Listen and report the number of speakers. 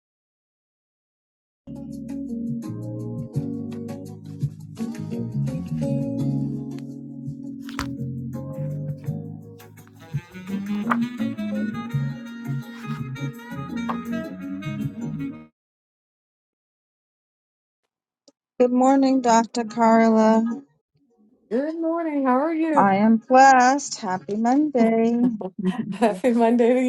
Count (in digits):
2